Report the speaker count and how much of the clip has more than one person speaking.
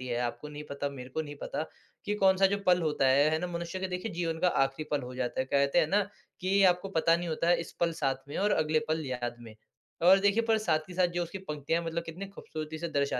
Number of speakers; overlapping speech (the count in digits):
1, no overlap